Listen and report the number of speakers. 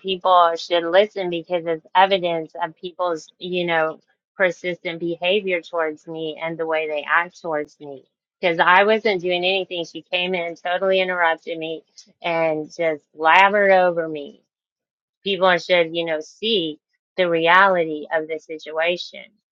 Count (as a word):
one